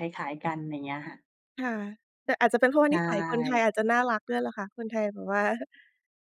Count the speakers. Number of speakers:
2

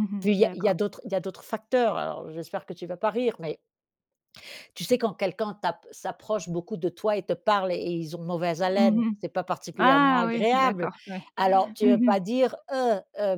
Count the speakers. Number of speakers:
2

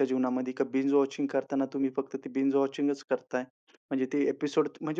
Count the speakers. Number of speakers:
1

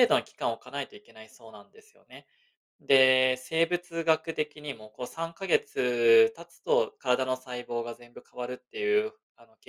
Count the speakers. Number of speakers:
1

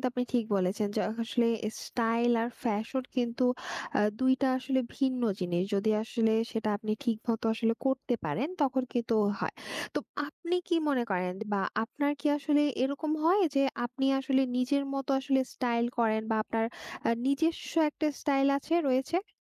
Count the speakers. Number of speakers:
1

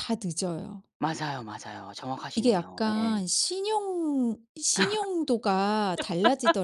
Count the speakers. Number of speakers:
2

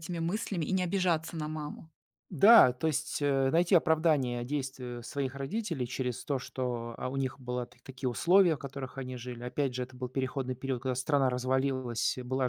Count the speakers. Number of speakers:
2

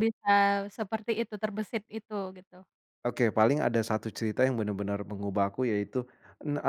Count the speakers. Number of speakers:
2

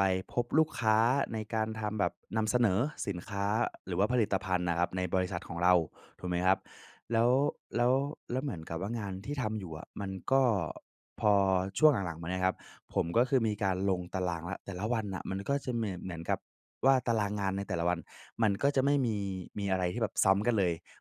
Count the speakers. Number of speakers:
1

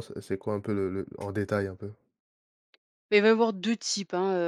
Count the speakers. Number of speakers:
2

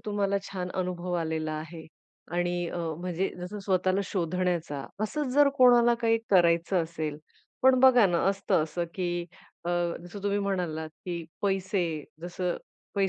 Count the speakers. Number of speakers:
1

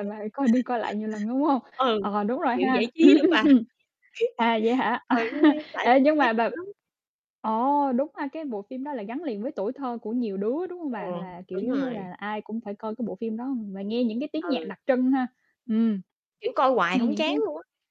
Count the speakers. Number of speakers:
2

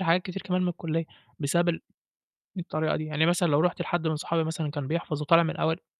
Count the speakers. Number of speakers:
1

